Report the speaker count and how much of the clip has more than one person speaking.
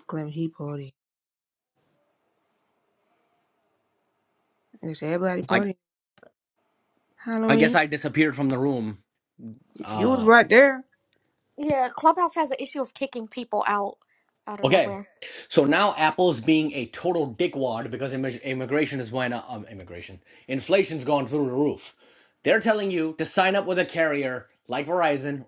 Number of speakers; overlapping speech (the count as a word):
three, about 5%